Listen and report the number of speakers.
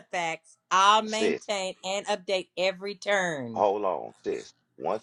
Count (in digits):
2